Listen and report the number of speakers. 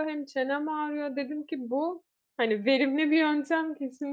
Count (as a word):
one